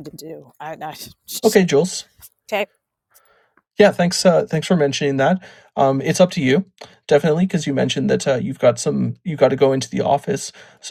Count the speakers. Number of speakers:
2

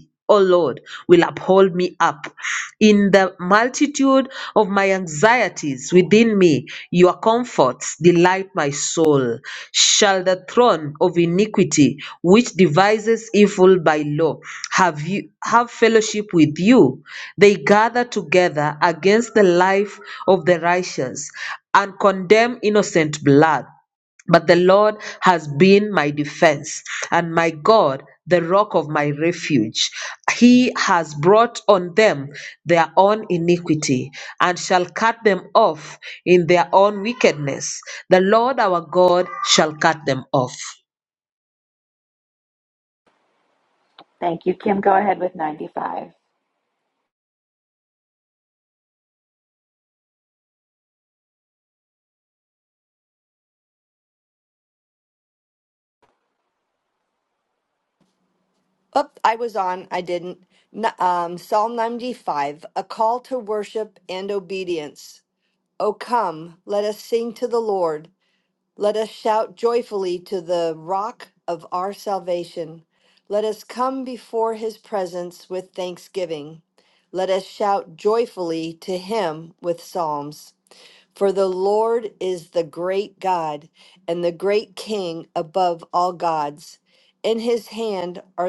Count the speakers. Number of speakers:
3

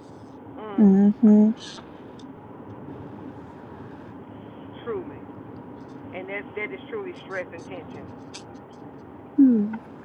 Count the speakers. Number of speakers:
2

